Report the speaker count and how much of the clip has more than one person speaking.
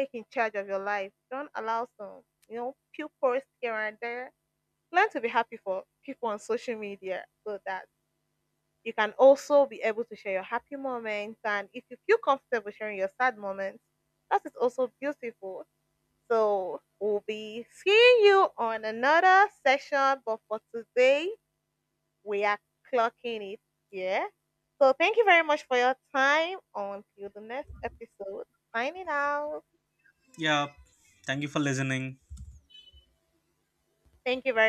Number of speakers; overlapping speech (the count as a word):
two, no overlap